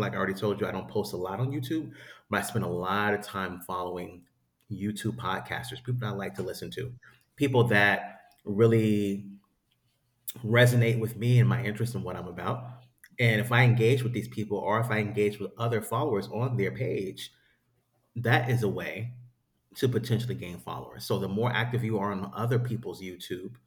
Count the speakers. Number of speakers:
one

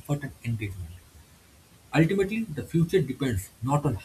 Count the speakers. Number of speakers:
one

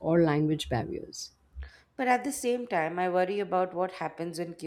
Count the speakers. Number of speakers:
two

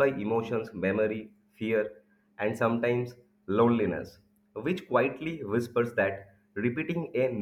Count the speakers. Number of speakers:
one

